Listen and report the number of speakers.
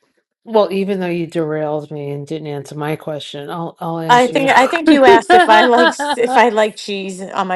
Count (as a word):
two